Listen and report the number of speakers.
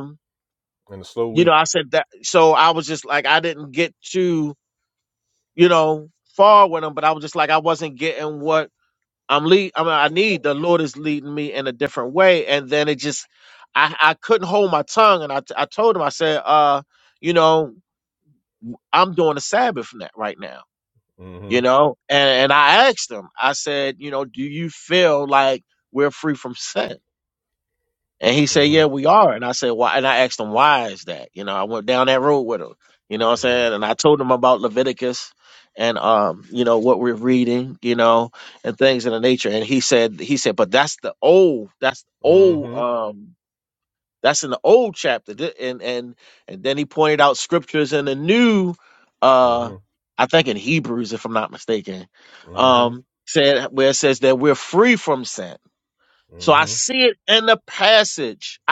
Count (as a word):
two